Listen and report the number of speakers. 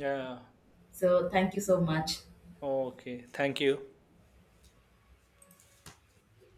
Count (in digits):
2